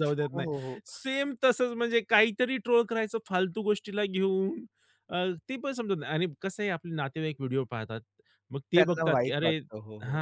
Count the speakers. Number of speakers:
two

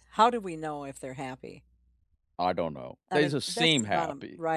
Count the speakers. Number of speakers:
two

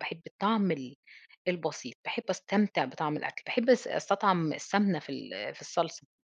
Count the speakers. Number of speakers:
one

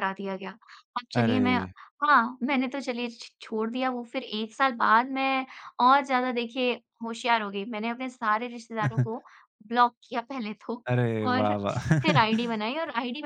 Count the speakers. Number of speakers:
two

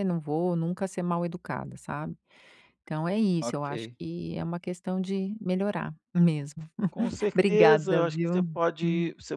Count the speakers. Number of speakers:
two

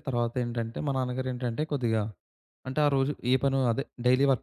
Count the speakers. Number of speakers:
one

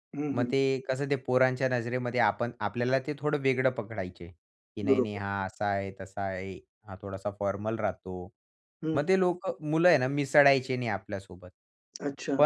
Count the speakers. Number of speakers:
two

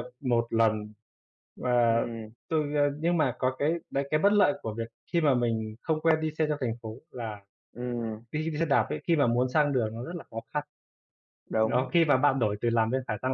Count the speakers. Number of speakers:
two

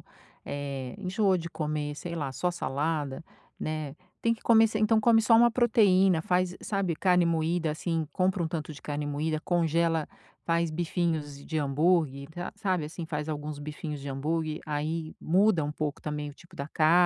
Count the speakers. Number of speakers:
one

